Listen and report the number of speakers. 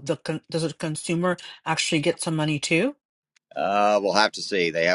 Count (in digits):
2